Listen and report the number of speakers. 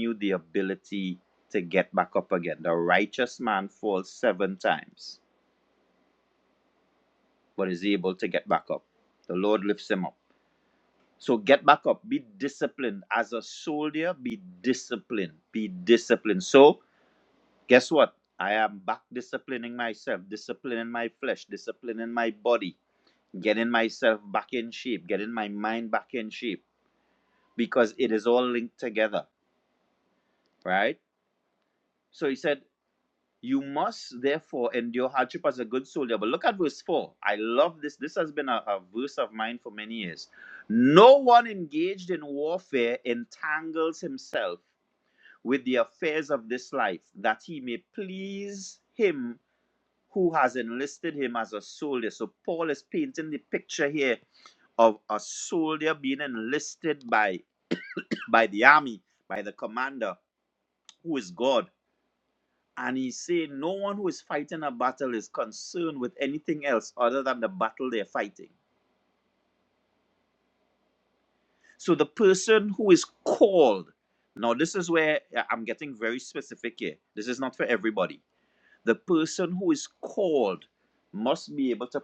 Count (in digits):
1